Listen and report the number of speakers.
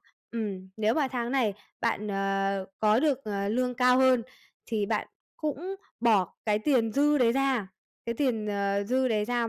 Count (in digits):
1